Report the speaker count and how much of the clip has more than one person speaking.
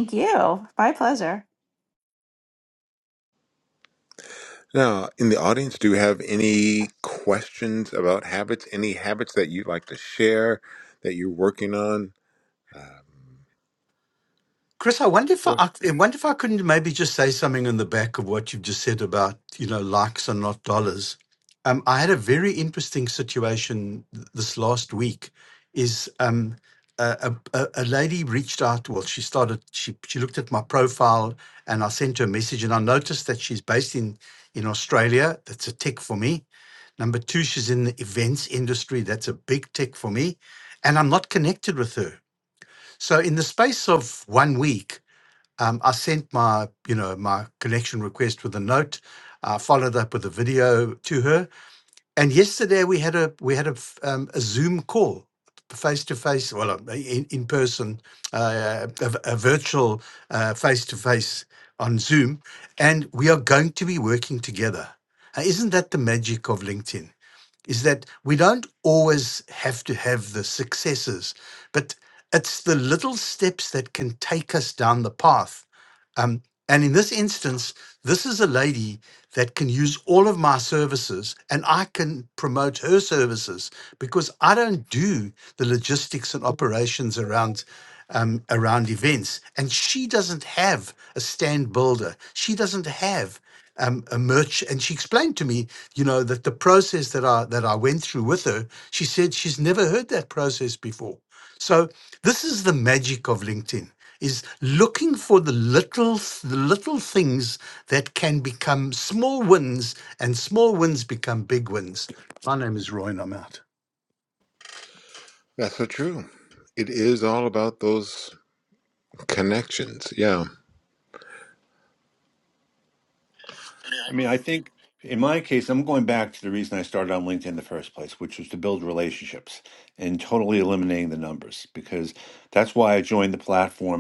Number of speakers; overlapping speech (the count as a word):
four, under 1%